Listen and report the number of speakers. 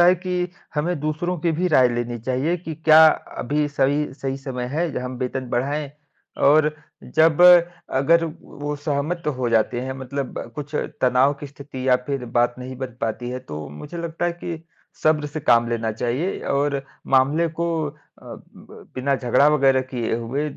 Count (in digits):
1